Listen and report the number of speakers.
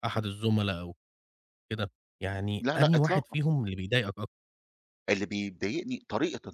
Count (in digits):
2